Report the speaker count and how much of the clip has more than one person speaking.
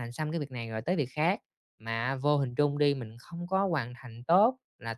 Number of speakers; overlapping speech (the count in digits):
1, no overlap